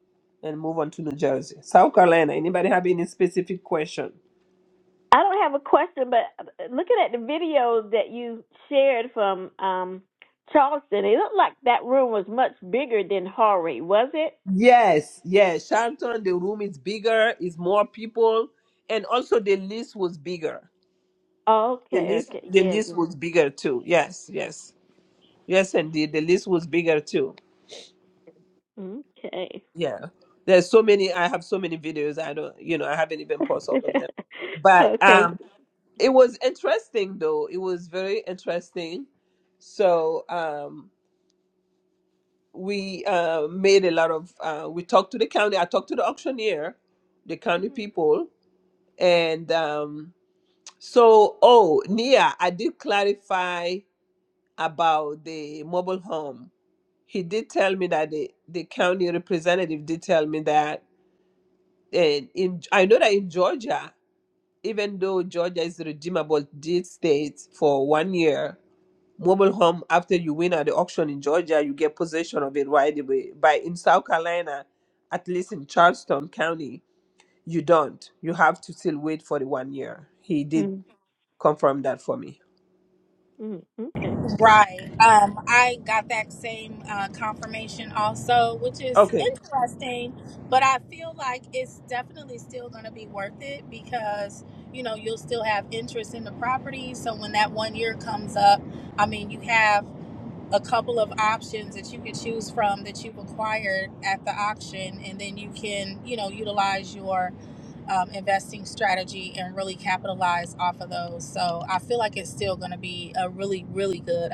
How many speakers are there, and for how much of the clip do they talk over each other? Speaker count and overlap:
three, about 2%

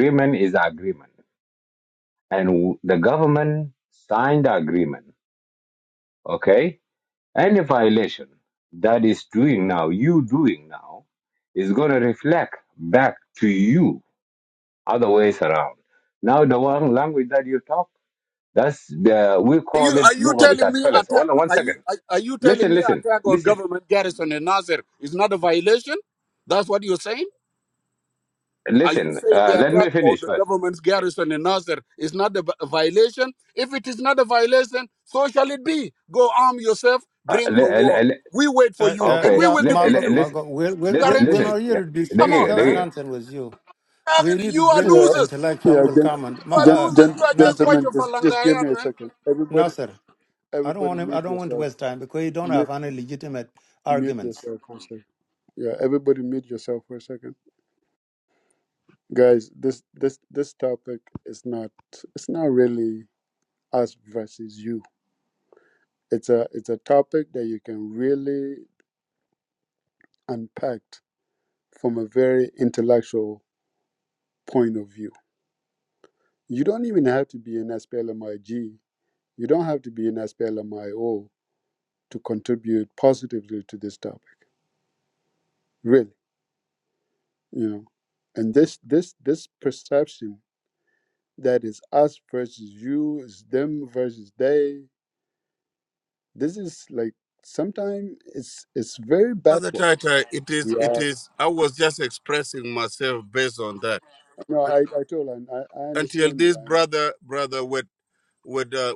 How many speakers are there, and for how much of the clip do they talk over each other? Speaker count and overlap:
four, about 15%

